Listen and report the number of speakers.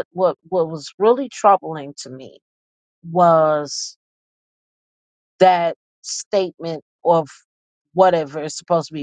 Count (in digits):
1